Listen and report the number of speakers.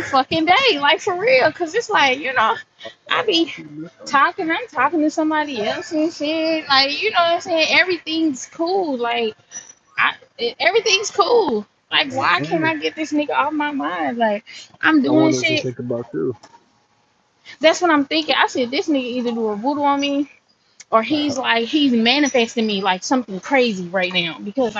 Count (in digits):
2